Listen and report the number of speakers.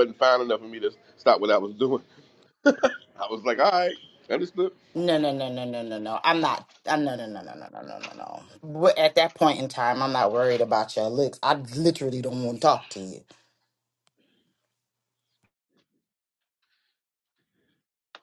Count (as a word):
two